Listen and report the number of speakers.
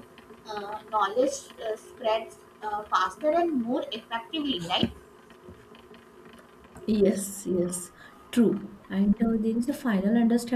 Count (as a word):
two